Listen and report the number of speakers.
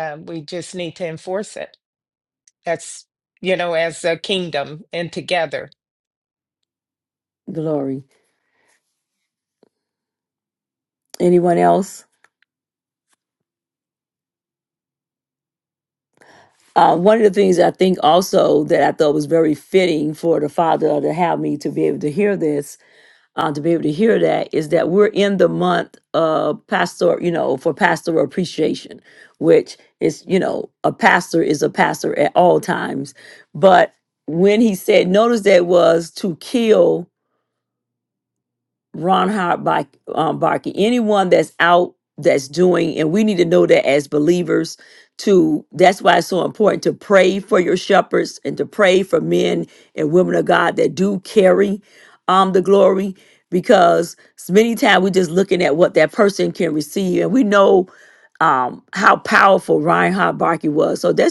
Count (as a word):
two